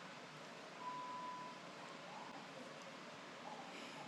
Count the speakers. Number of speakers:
0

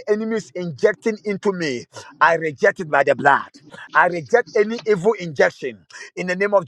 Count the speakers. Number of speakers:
1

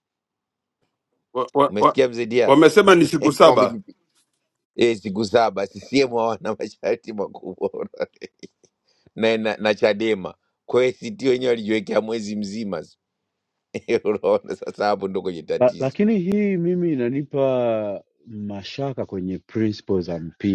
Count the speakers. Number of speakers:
3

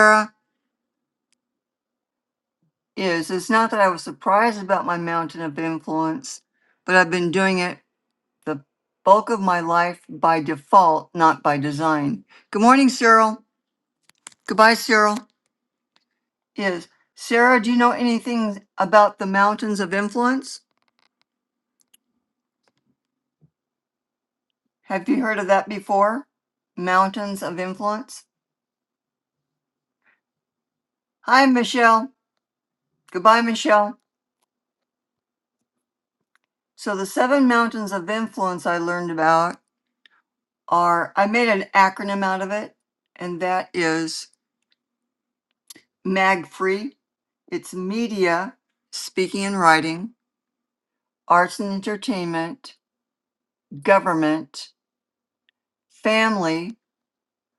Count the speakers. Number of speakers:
1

